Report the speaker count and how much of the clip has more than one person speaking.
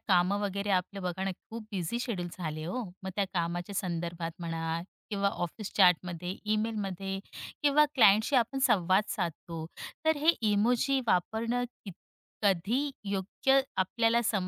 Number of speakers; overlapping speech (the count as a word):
one, no overlap